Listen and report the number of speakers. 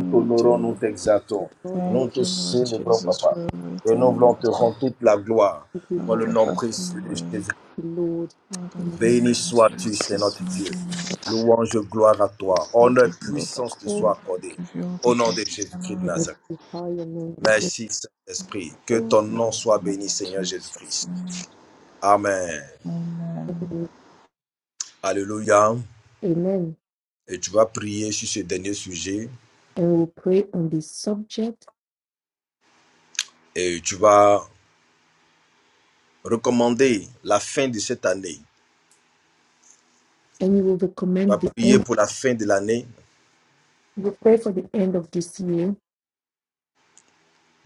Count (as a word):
three